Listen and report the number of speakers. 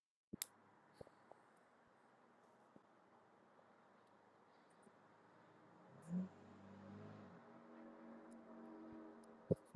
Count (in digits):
0